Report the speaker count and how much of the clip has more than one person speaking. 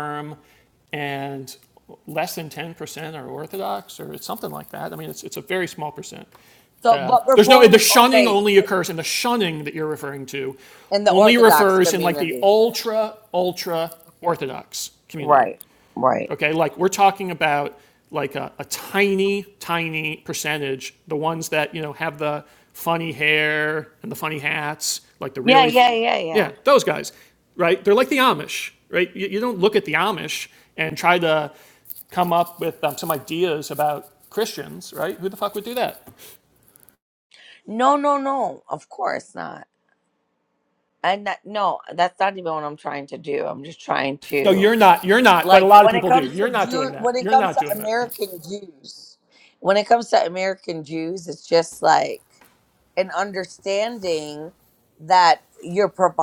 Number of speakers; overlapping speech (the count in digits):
2, about 12%